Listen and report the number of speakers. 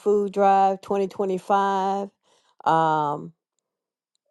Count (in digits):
1